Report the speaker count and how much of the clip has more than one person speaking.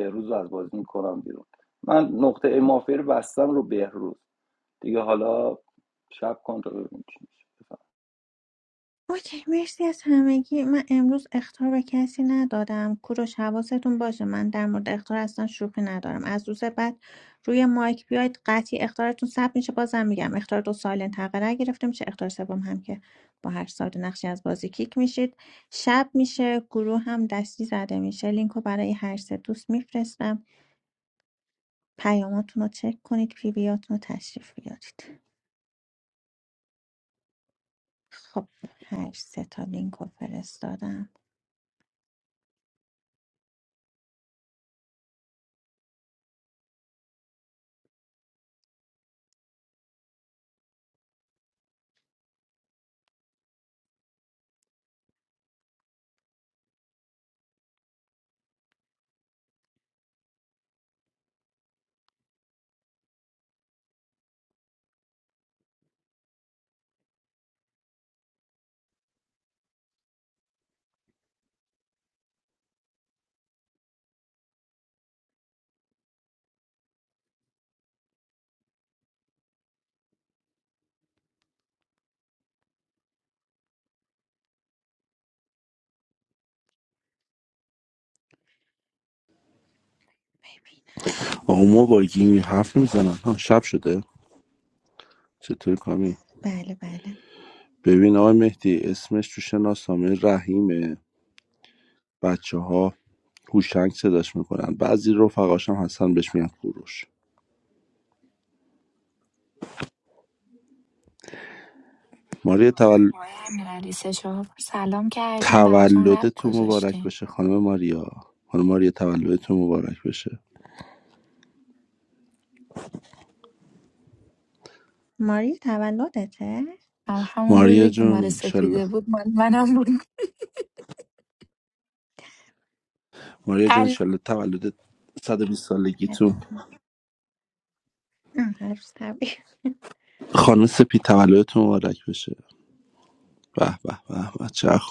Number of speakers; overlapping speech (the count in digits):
4, about 2%